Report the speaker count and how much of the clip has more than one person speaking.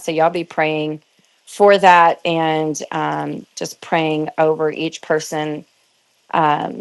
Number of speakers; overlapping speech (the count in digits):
1, no overlap